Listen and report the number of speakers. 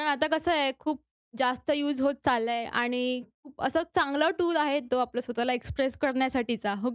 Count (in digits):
1